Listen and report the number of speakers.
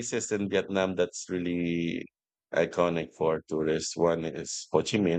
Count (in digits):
1